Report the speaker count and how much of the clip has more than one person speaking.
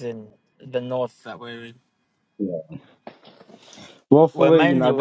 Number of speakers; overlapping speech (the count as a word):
two, about 13%